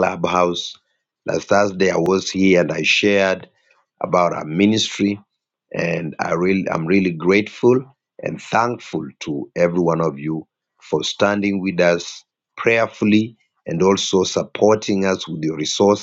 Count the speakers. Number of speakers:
one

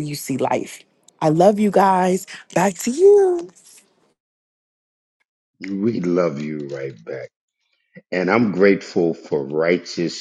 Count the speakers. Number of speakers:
two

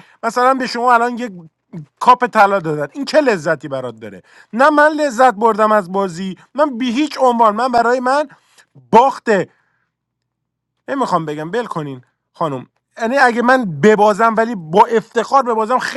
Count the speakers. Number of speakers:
one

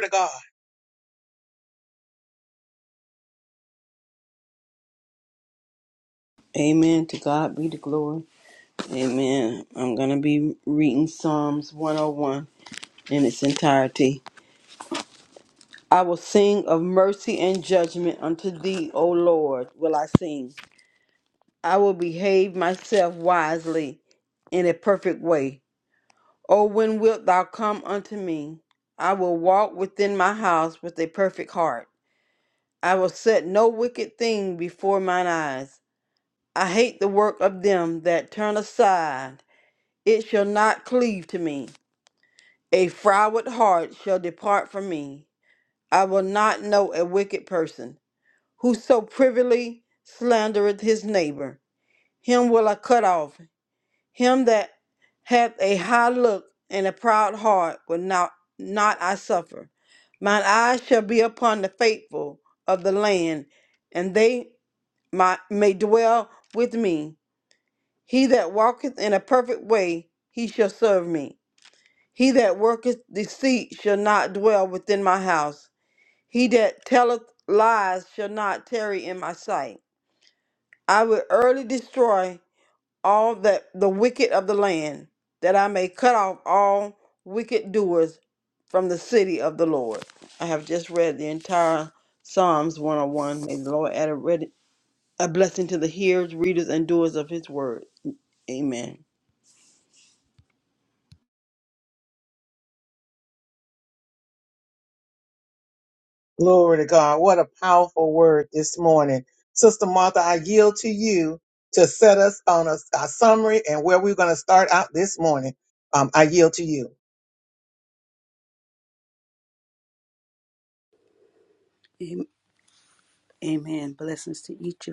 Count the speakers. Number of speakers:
three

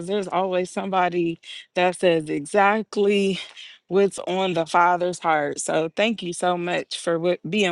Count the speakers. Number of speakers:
one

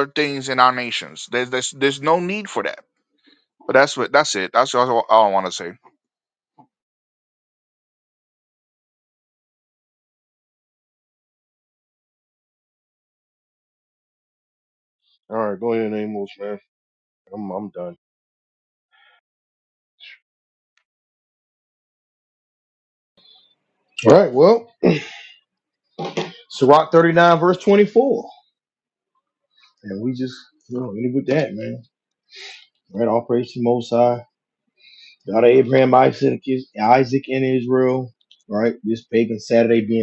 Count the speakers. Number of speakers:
three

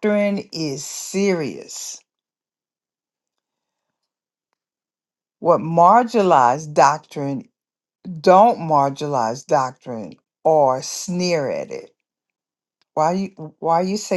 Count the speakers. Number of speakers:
one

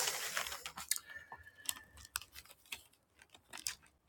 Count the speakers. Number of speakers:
zero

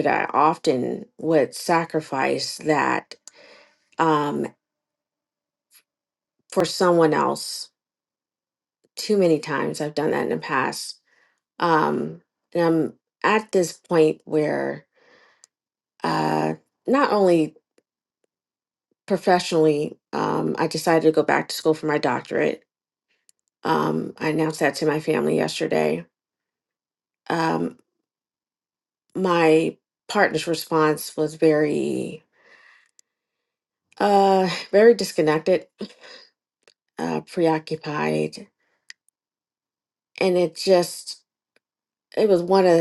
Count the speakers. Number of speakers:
one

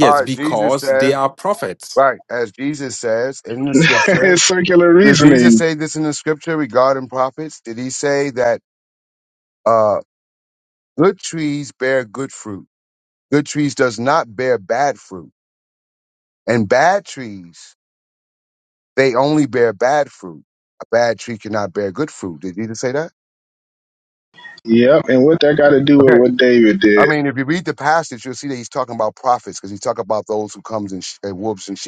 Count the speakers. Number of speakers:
three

